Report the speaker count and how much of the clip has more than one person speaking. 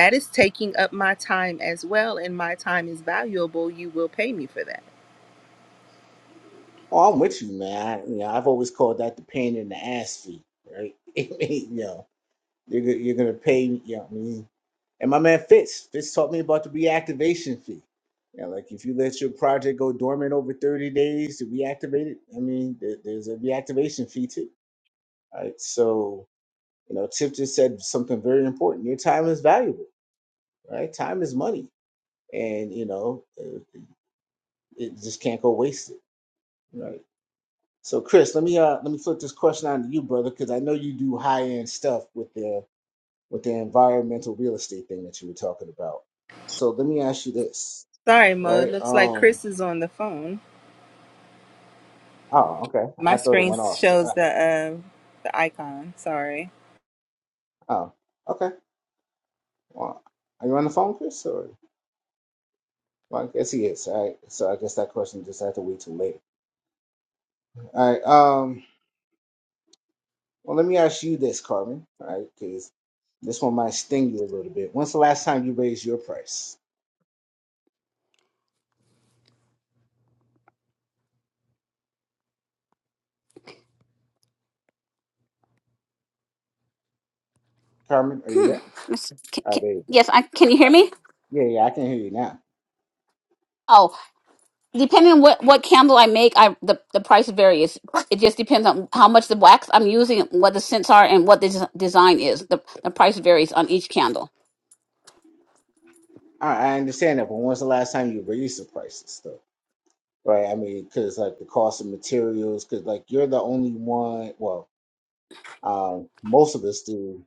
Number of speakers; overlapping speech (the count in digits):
3, about 2%